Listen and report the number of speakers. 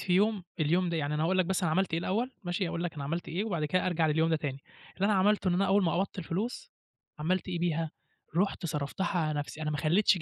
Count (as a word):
one